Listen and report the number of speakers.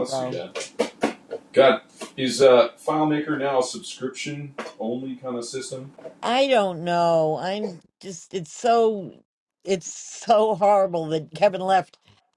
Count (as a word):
two